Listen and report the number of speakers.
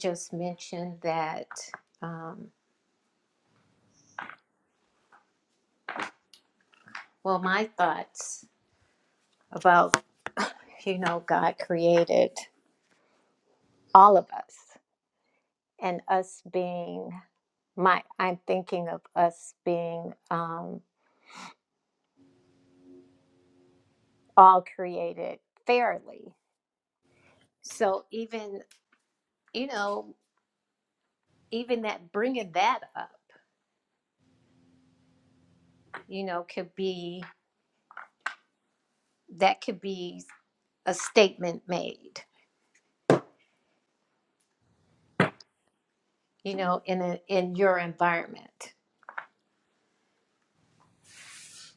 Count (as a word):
one